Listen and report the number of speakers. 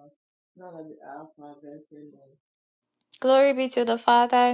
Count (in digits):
2